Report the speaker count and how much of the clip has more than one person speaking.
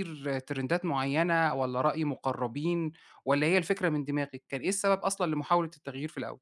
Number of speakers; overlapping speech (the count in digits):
1, no overlap